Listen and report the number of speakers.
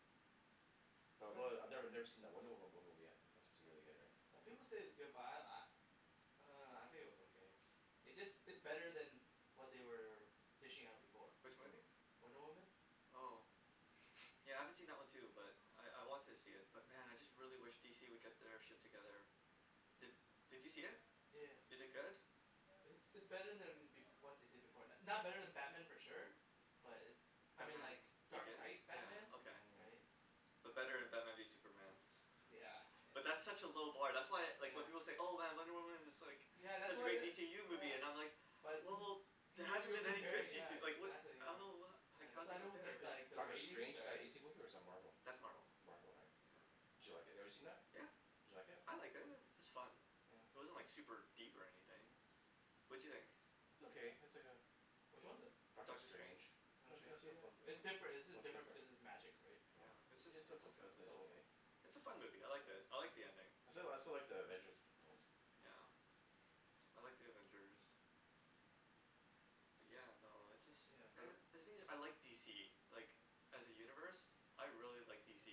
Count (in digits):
3